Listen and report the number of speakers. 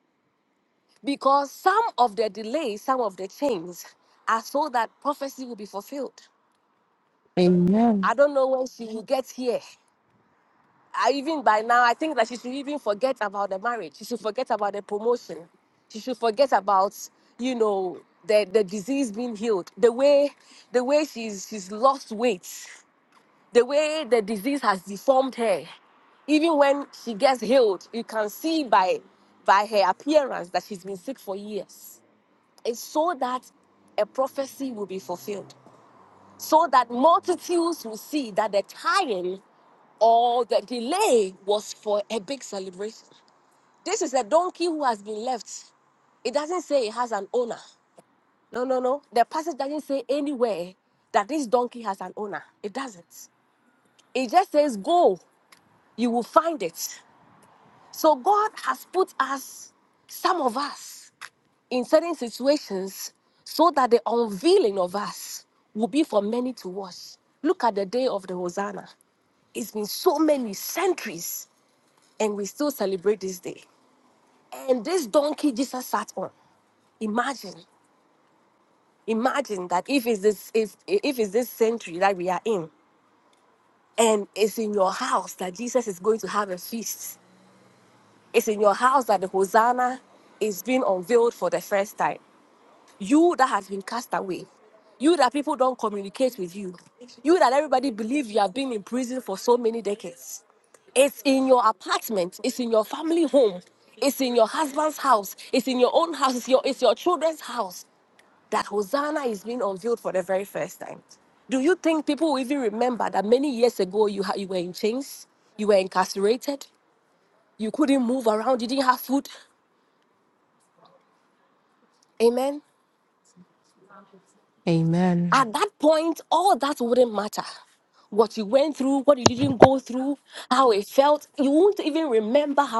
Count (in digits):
2